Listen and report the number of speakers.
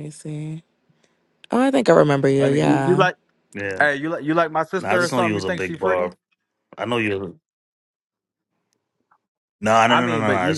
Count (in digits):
3